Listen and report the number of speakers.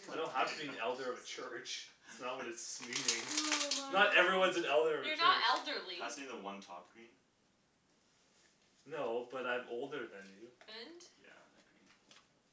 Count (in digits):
4